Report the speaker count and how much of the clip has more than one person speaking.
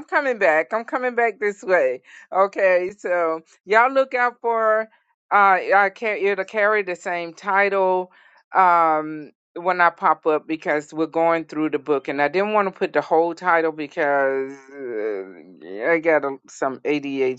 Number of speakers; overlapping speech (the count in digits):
1, no overlap